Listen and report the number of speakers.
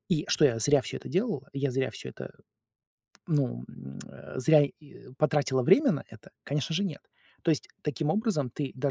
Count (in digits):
1